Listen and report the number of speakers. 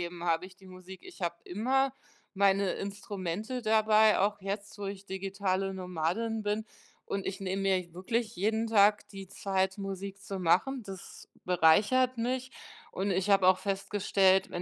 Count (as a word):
one